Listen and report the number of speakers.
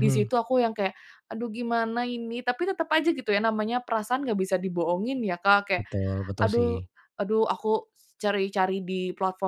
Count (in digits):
2